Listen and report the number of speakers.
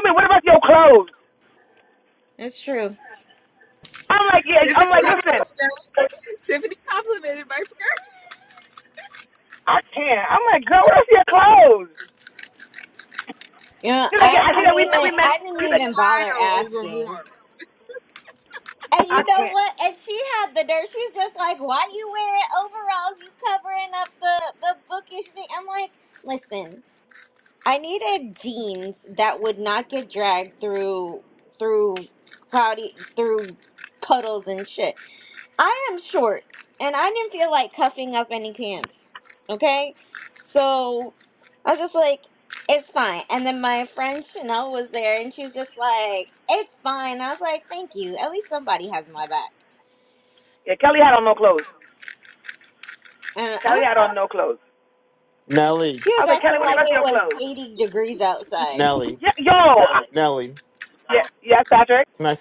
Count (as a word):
four